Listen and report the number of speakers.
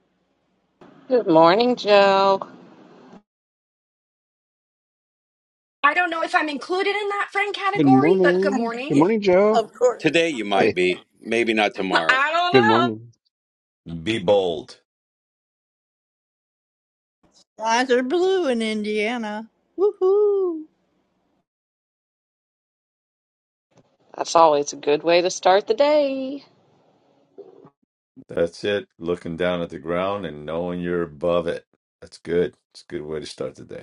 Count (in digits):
6